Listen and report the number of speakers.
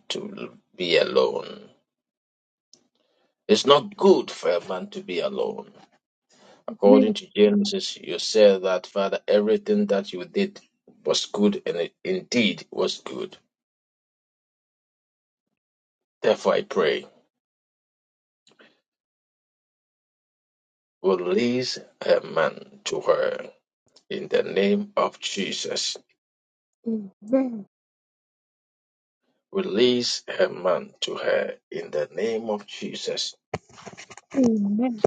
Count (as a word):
two